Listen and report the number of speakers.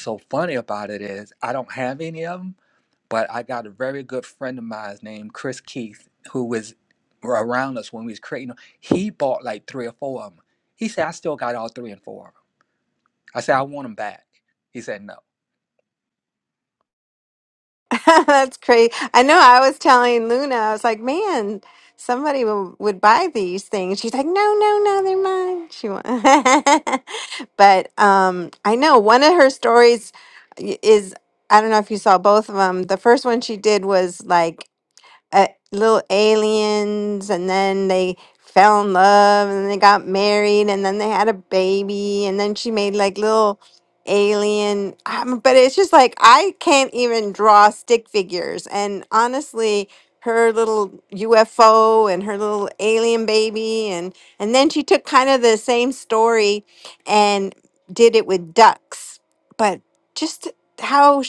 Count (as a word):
two